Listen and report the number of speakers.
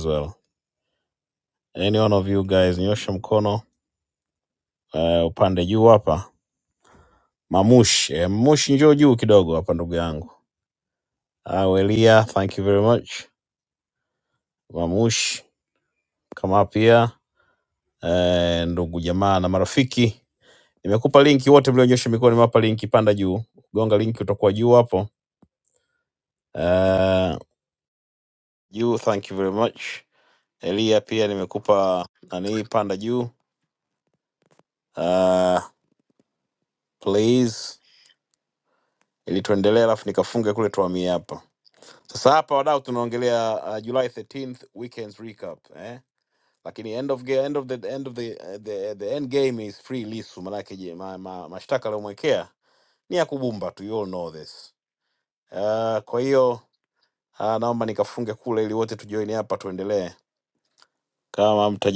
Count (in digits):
1